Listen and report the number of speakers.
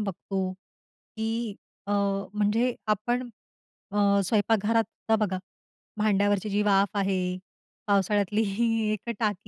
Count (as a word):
one